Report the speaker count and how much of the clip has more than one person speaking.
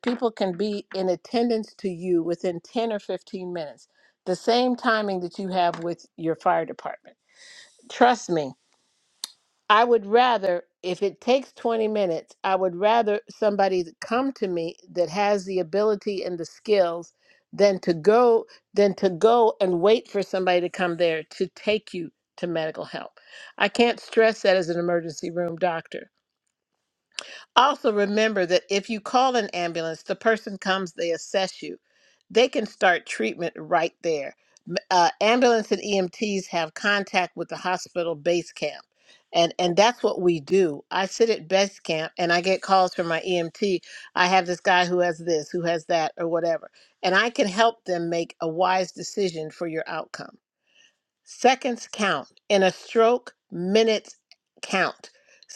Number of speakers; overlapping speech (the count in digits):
1, no overlap